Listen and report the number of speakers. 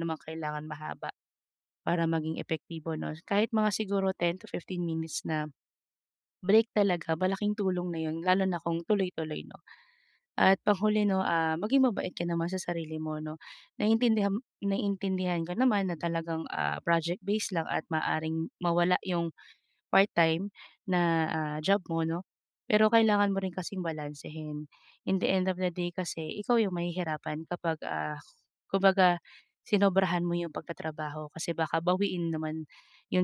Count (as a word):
one